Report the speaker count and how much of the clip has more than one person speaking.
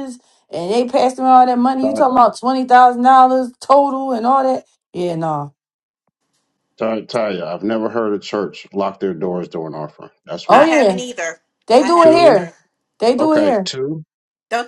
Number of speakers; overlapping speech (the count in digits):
3, about 13%